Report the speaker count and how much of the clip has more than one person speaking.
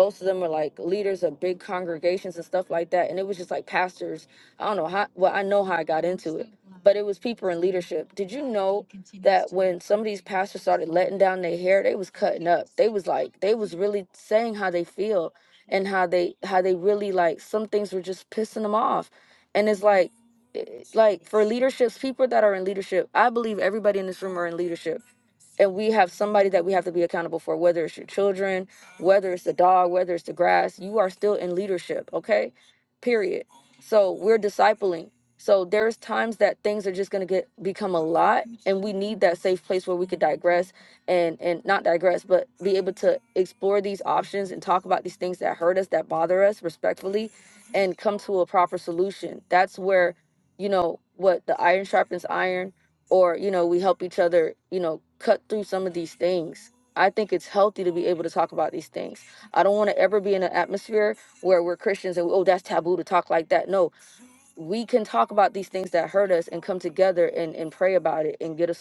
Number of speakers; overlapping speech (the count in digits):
1, no overlap